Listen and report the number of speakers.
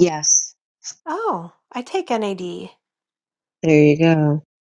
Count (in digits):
2